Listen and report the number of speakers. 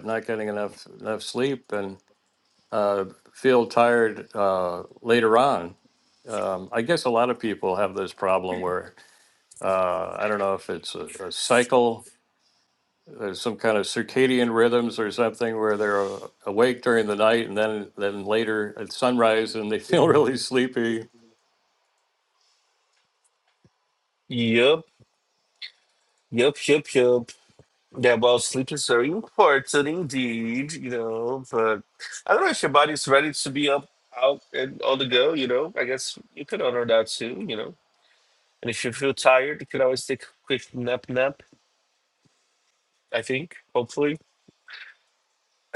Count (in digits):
2